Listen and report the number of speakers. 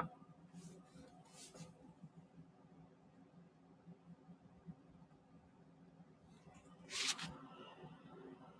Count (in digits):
0